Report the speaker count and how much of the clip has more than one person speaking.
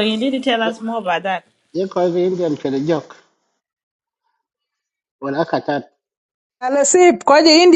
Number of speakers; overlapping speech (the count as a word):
three, no overlap